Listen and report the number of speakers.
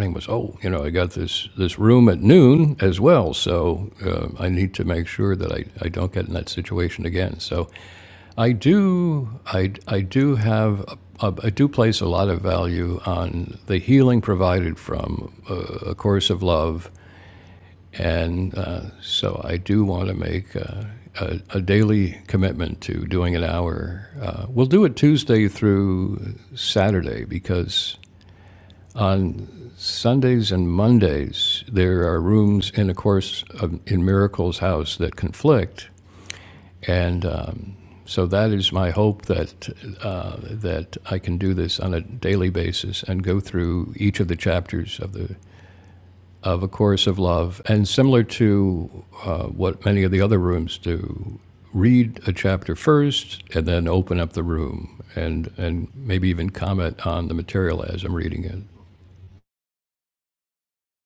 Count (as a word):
one